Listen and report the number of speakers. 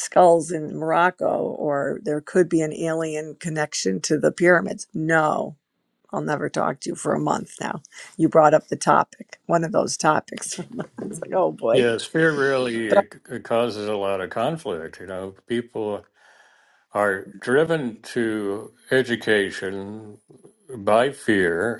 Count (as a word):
two